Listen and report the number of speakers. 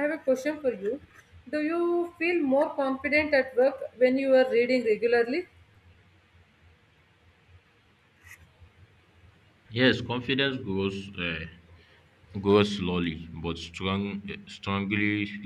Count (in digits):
2